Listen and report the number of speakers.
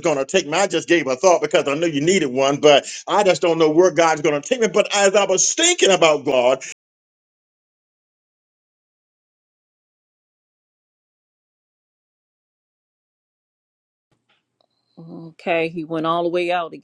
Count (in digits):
2